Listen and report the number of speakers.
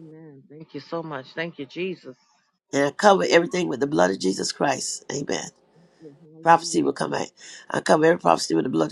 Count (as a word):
two